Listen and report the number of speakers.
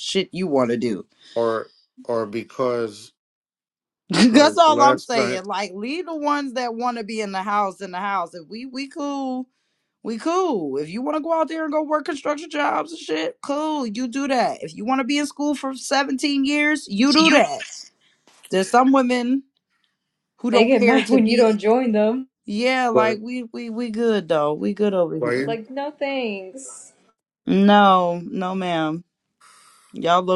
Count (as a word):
three